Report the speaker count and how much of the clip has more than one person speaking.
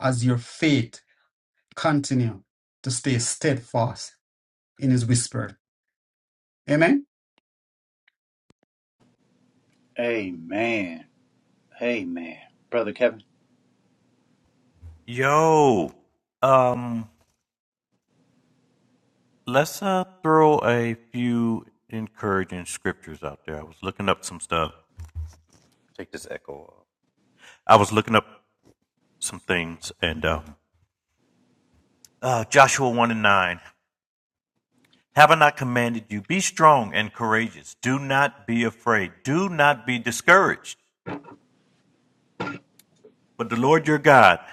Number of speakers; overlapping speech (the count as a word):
three, no overlap